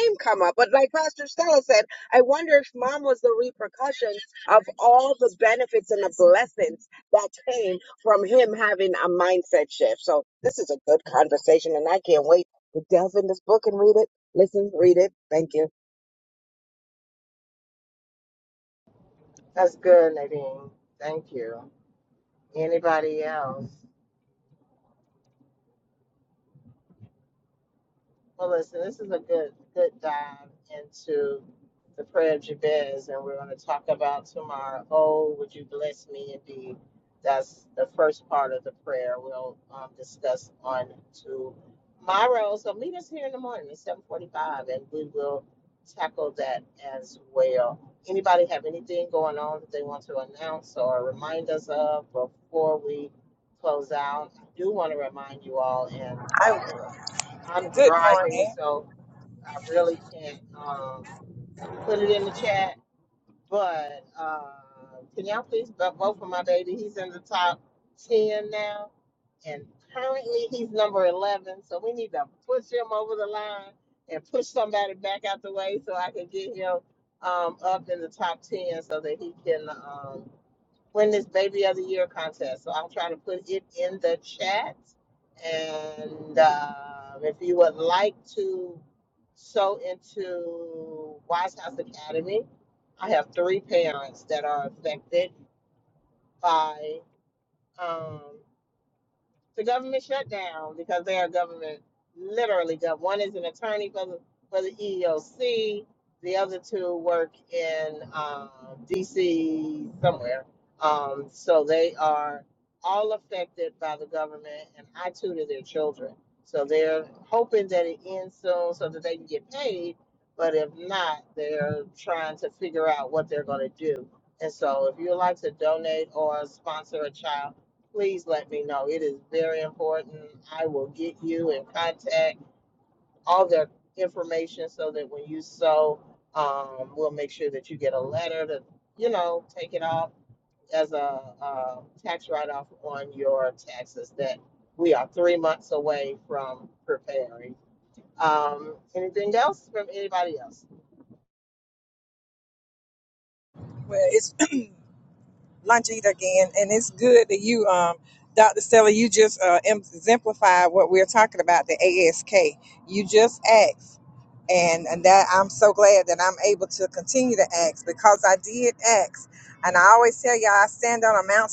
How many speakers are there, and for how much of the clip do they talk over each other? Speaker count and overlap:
three, under 1%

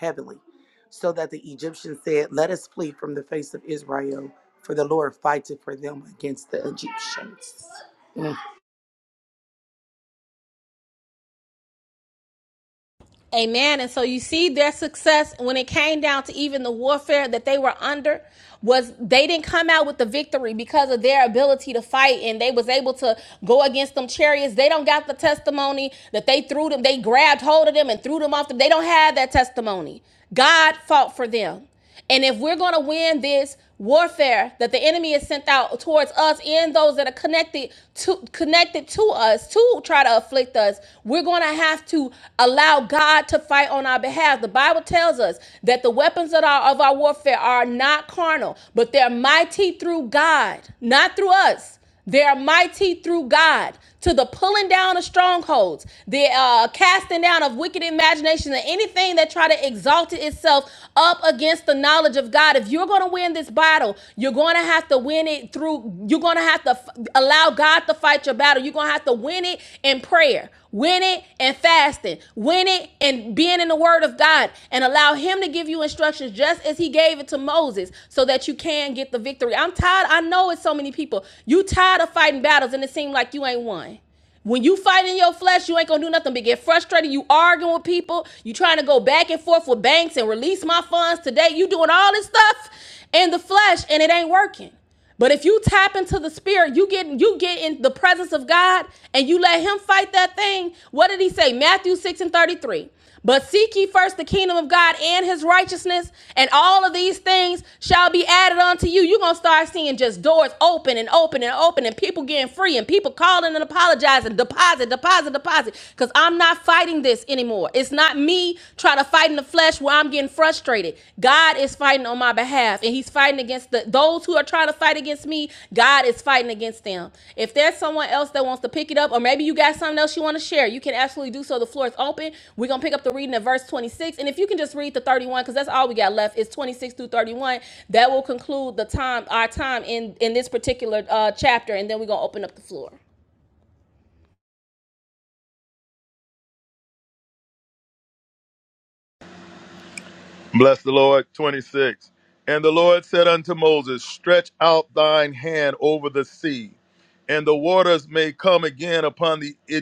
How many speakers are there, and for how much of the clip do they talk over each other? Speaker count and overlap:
three, no overlap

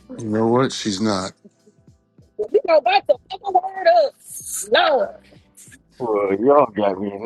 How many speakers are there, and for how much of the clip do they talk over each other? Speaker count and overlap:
three, no overlap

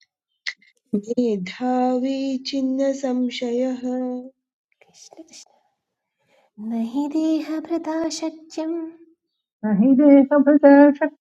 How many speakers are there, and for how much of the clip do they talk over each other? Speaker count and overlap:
three, no overlap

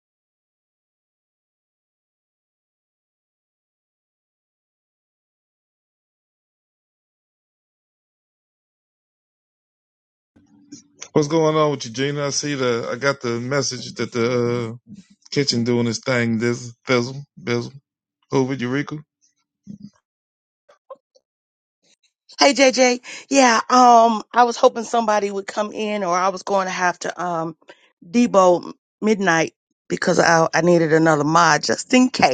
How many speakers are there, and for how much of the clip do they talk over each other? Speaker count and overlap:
two, no overlap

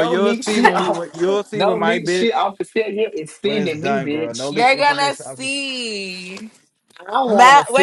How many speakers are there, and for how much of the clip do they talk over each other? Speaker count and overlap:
three, about 56%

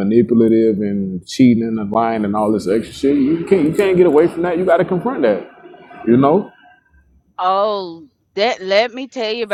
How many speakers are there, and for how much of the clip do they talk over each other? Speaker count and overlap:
two, no overlap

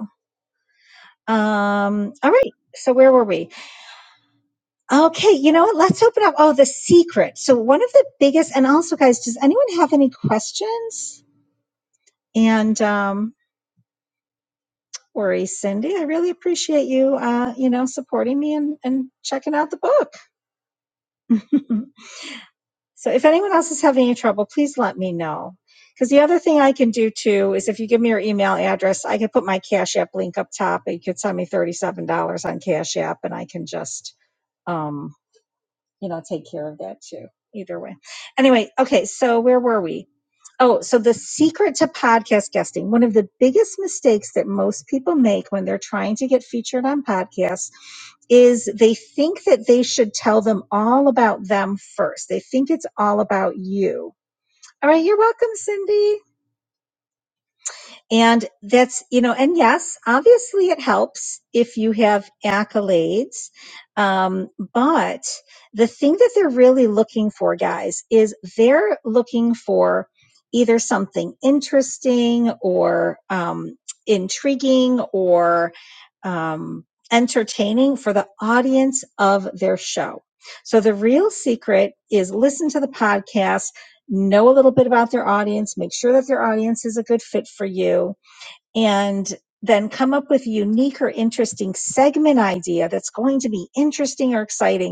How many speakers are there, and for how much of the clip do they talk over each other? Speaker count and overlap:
one, no overlap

